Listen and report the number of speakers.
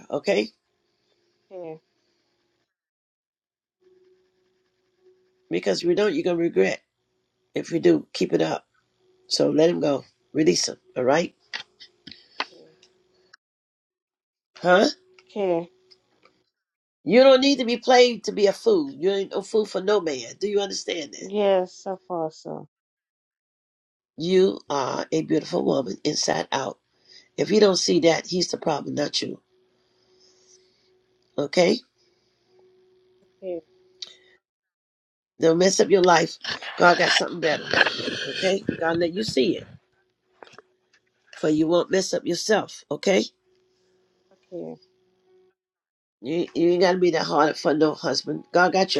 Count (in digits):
2